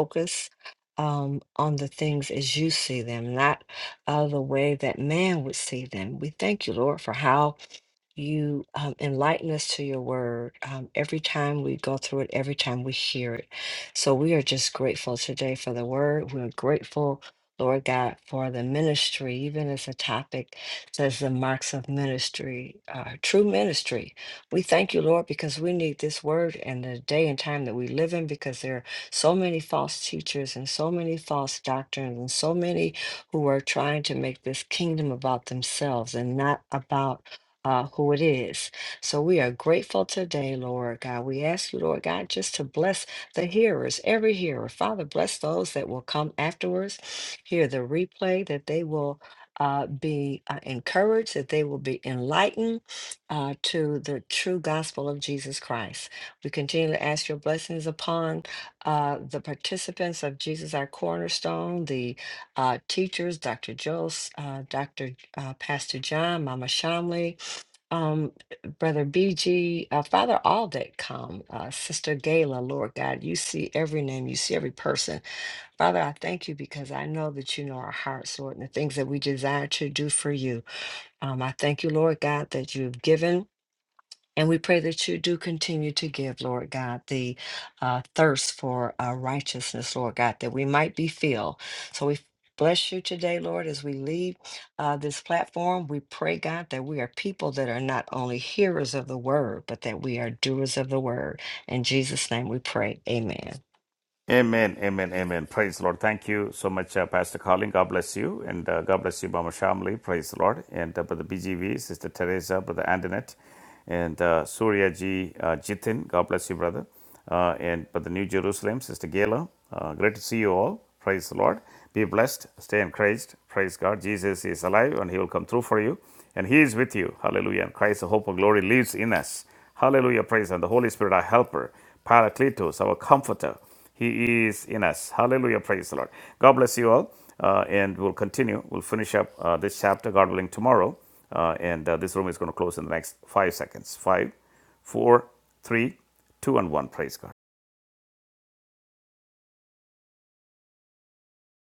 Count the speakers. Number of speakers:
2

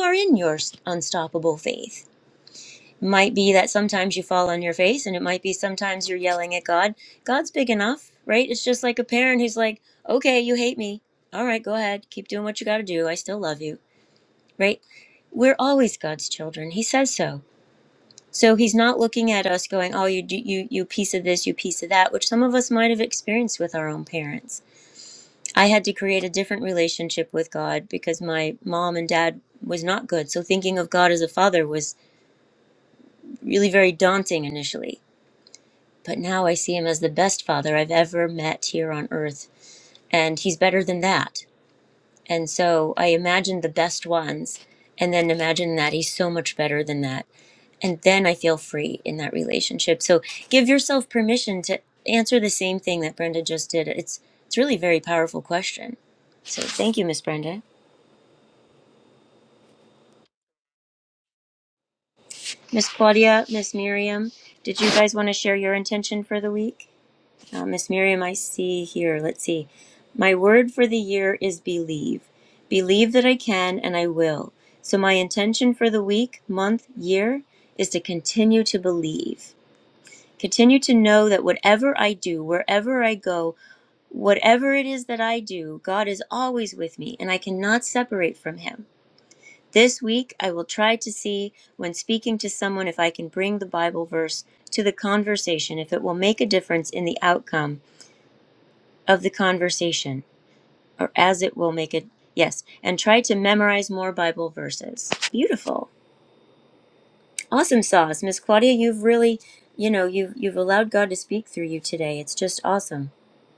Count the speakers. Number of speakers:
1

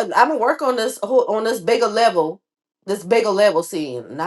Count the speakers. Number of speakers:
1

